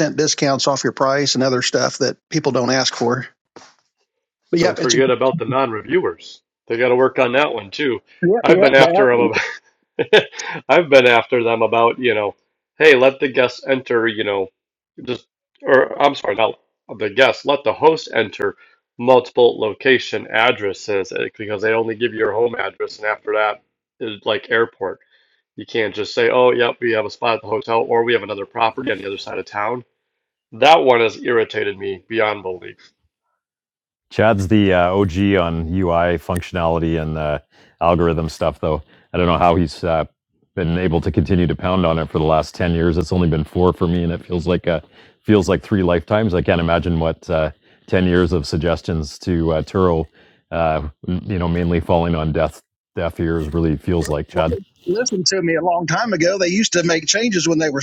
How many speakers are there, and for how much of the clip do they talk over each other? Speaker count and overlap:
3, about 2%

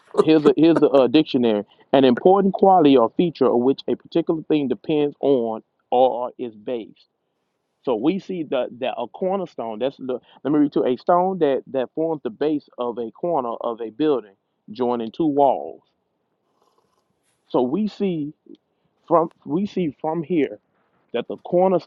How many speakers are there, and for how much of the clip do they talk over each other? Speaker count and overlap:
1, no overlap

